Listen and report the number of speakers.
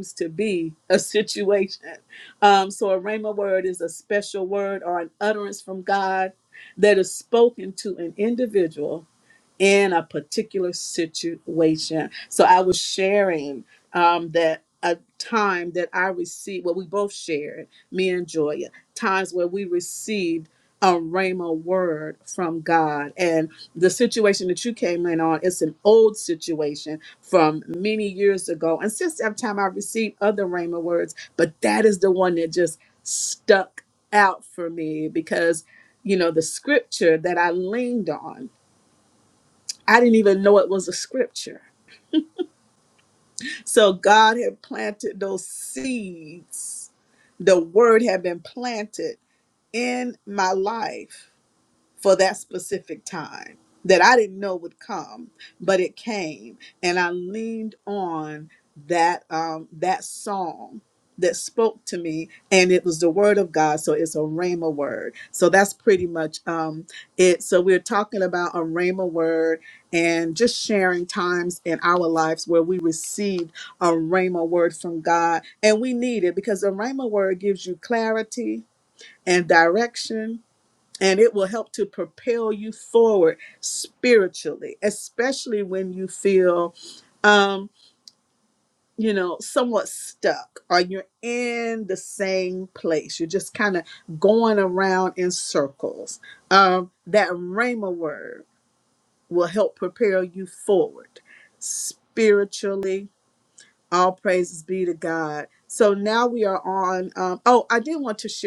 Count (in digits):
1